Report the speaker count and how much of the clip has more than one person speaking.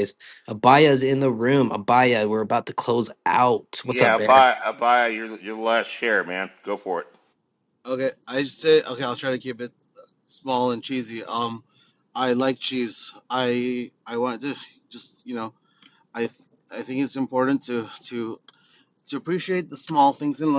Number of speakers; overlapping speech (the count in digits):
3, about 3%